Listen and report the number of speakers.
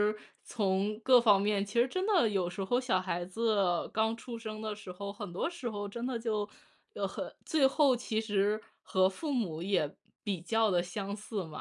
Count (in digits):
1